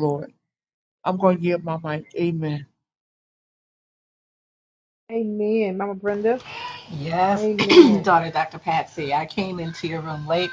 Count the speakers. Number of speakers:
3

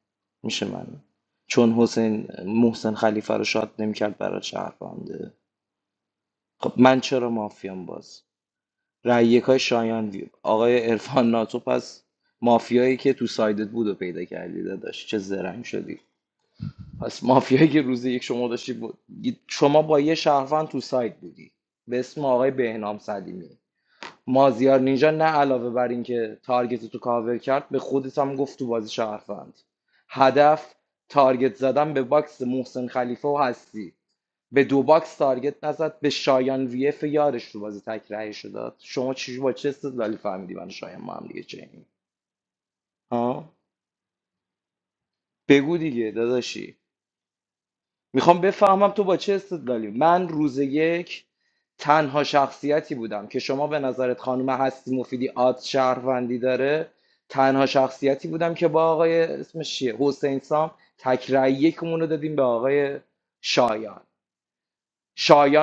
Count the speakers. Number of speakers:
1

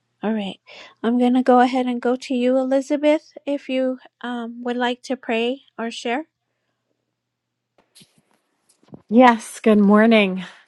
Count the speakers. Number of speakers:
2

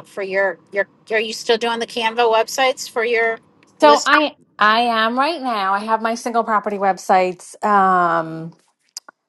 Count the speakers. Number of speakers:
2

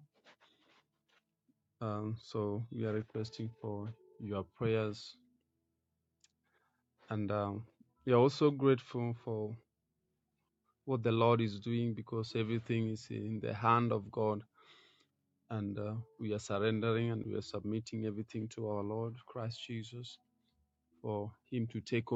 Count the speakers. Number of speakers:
1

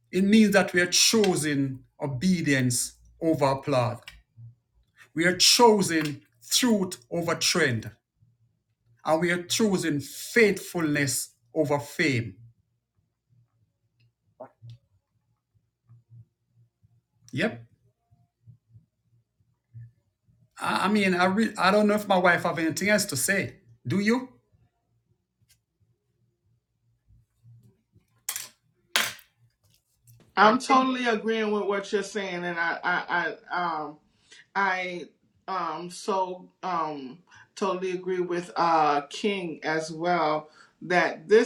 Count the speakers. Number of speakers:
2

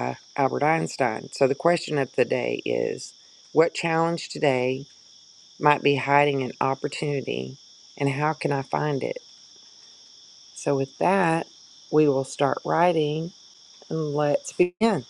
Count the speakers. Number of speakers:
1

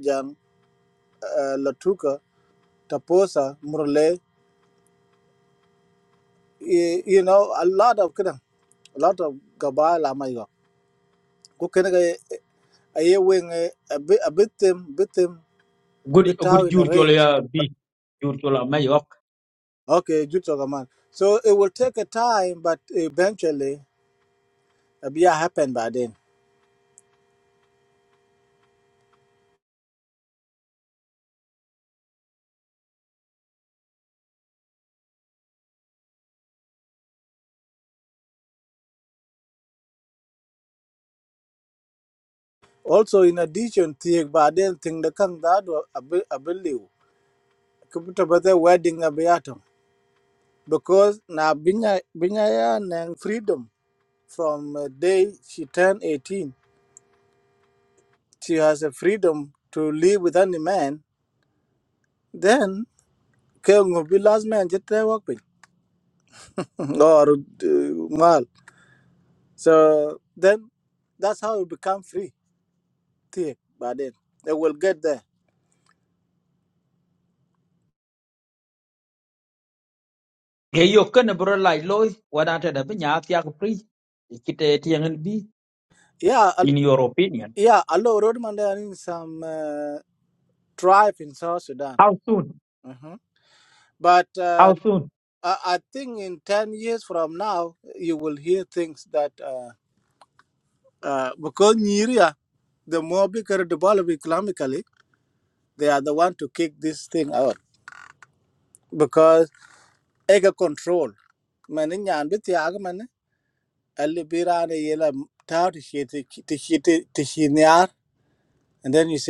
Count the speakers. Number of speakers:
2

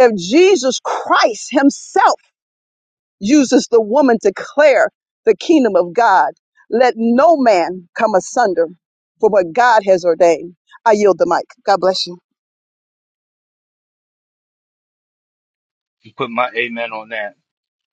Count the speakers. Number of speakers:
2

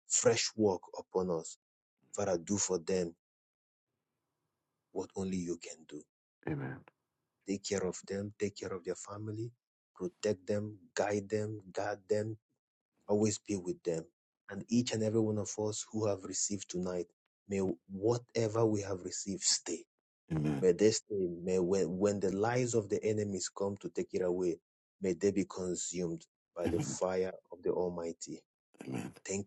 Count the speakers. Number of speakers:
2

